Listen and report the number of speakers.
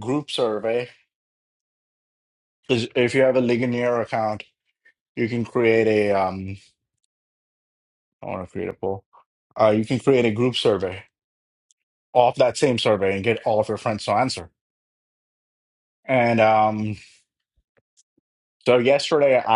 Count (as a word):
one